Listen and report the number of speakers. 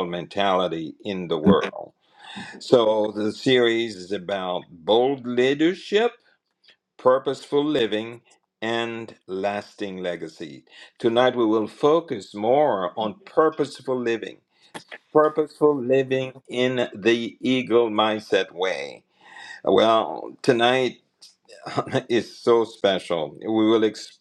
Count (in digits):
1